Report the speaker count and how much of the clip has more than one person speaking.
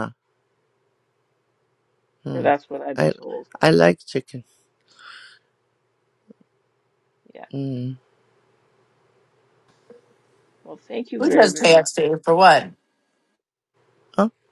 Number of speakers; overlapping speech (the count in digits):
3, about 7%